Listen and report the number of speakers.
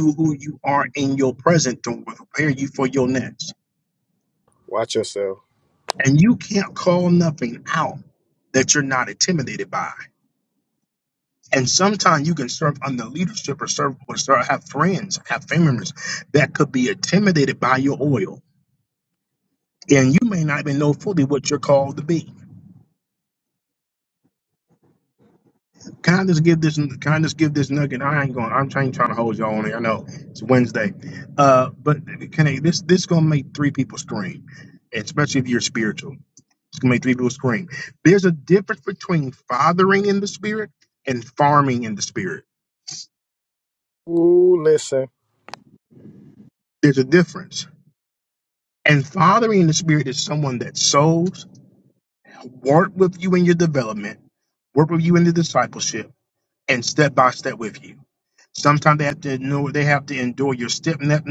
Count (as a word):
two